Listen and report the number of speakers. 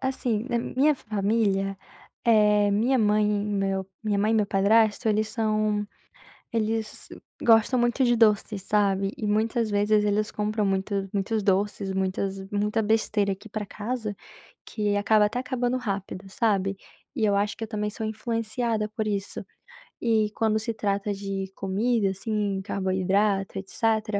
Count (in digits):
1